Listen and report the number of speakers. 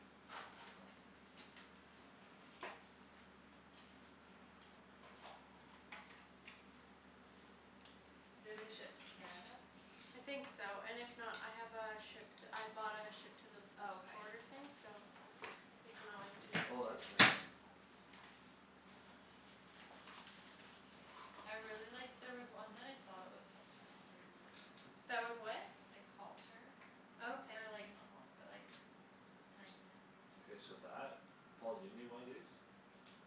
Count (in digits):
3